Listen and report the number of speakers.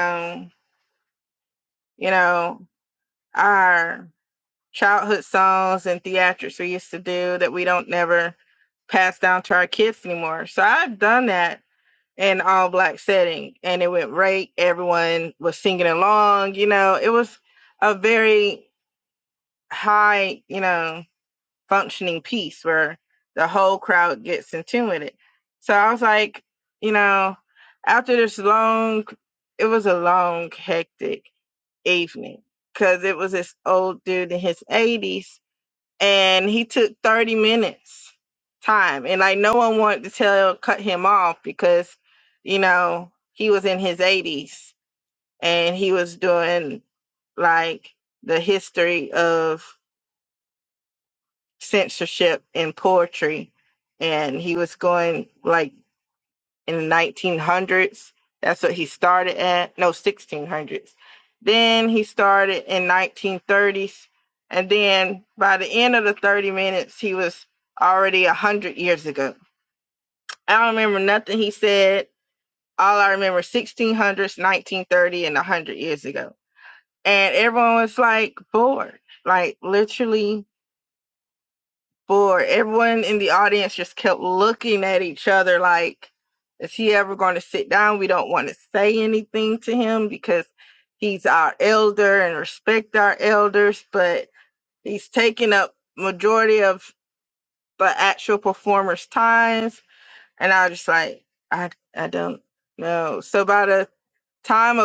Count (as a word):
one